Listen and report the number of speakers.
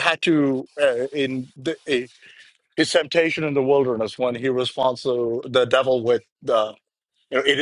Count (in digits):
1